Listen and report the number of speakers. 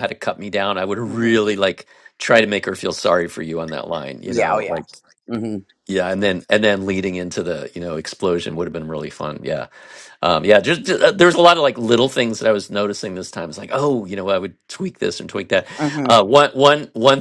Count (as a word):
two